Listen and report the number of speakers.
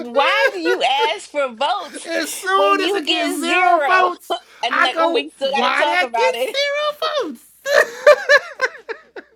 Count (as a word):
two